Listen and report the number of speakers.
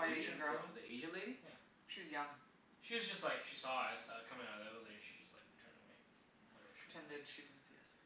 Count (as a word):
three